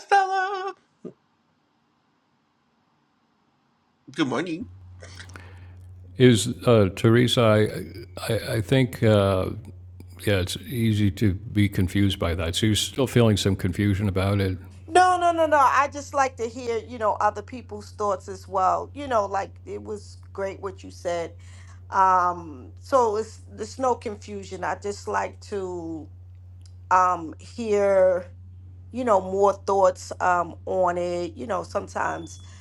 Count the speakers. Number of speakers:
3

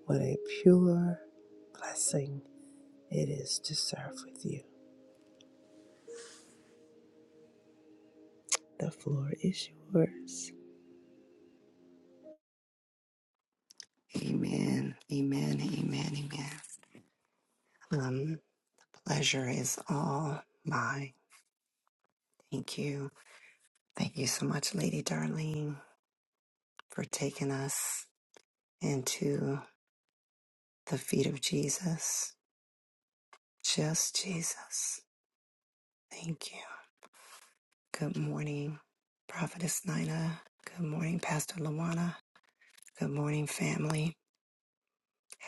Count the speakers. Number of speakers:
2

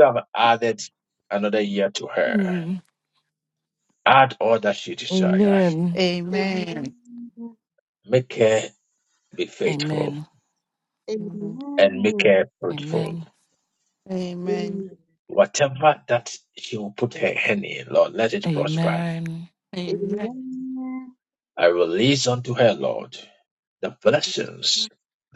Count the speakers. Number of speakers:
4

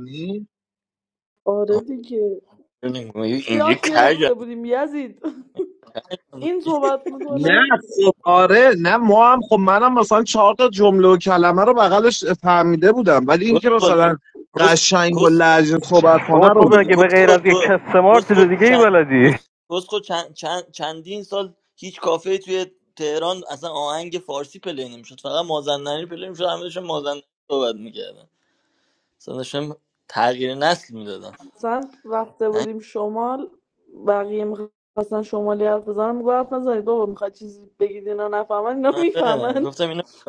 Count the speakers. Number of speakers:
4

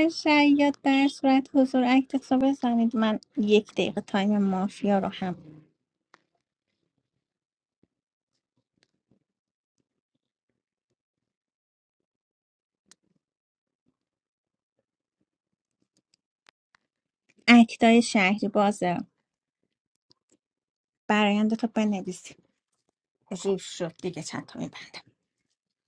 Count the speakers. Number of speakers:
1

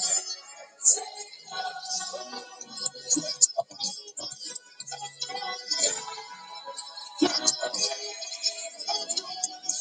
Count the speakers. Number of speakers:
0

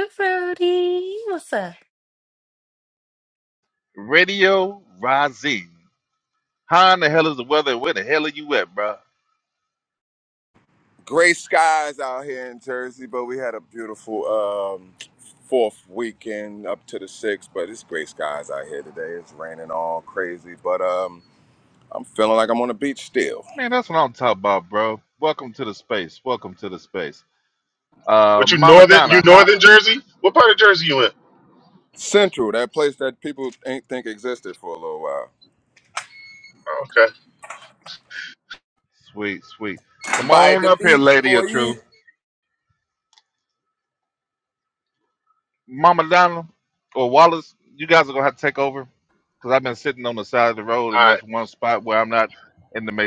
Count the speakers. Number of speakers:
4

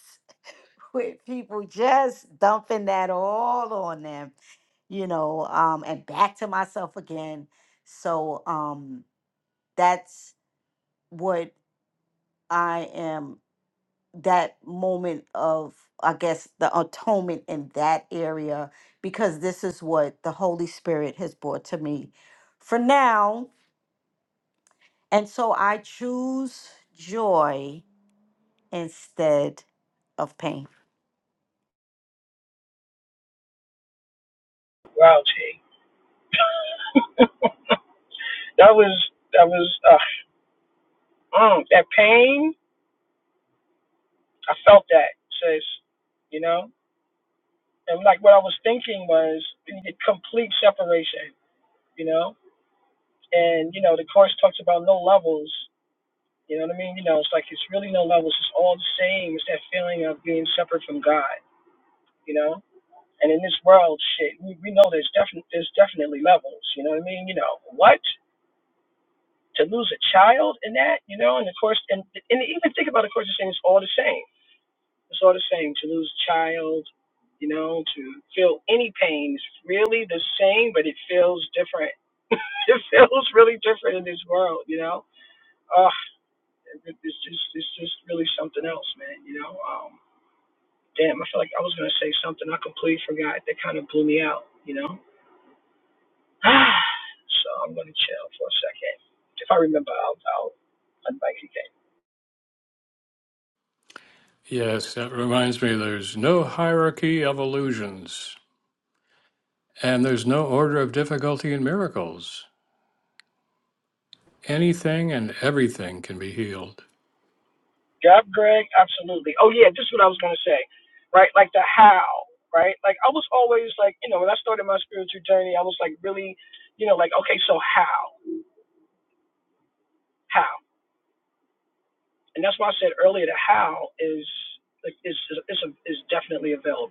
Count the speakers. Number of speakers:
3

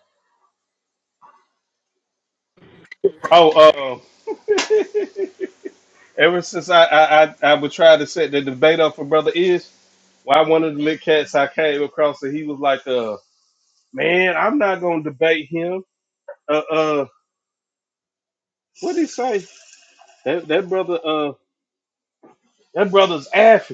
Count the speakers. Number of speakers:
1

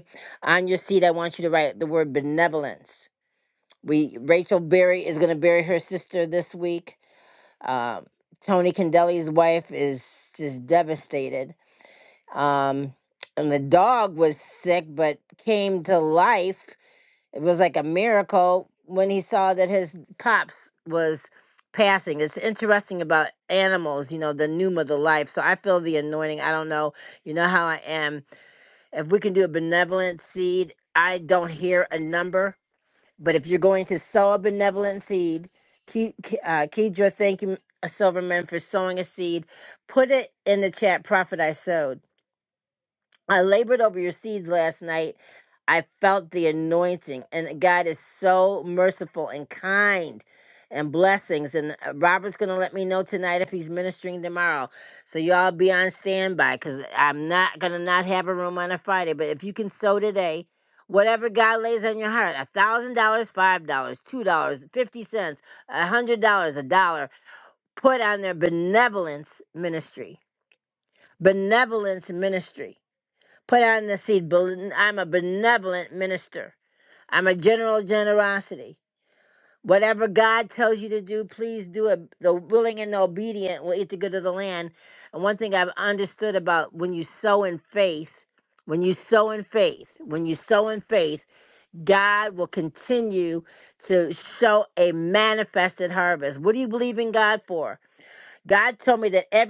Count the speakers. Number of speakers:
1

